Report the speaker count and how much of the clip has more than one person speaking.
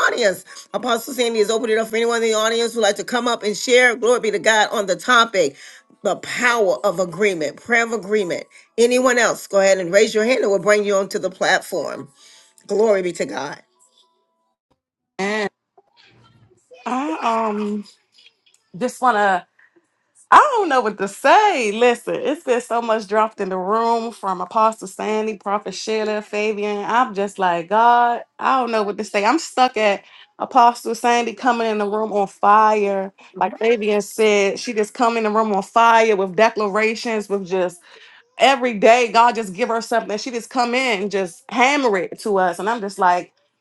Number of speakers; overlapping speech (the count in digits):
2, no overlap